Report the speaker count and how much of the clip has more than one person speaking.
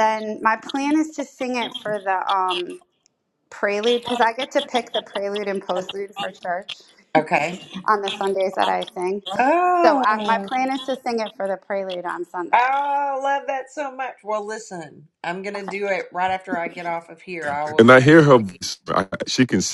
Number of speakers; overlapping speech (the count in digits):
3, about 9%